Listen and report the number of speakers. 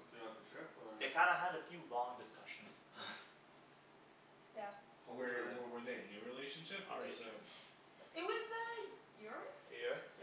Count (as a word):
four